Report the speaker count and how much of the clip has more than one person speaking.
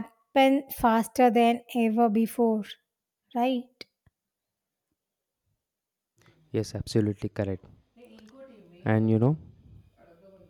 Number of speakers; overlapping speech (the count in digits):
2, no overlap